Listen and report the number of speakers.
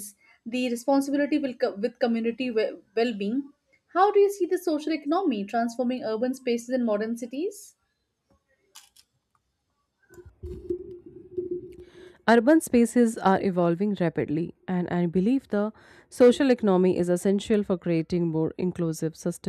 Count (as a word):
two